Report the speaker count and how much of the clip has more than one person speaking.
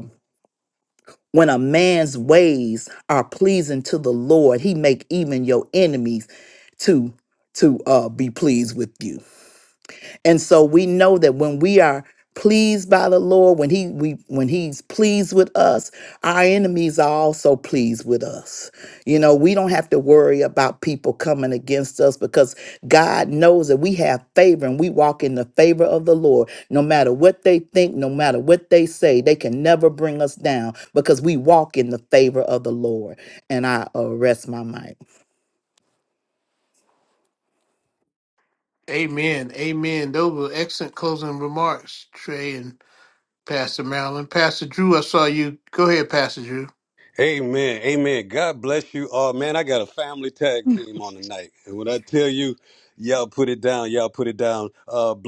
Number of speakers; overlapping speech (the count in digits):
3, no overlap